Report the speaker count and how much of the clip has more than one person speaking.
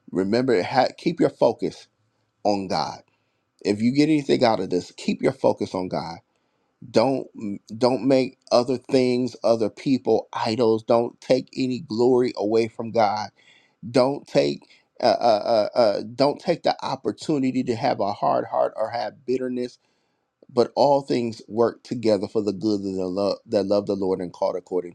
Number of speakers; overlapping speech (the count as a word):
one, no overlap